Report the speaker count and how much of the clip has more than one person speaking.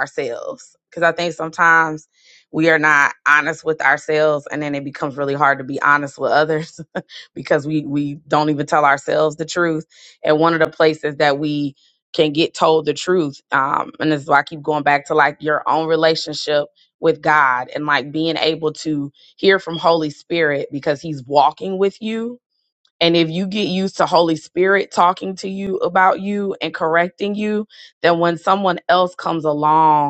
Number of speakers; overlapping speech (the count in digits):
1, no overlap